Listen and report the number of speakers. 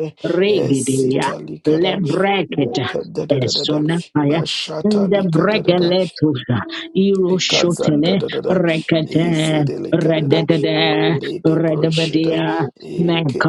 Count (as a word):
two